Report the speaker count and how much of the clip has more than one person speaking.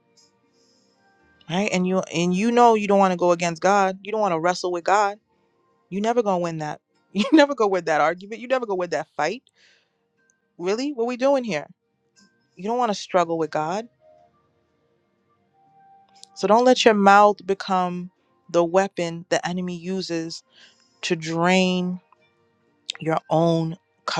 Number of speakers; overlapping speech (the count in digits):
1, no overlap